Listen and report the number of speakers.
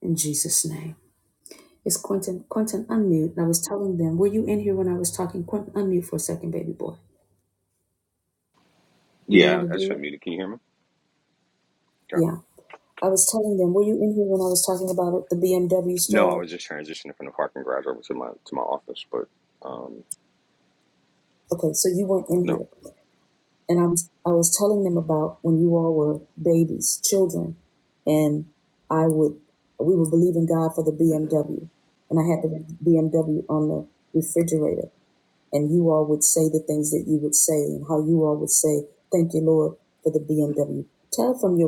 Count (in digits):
2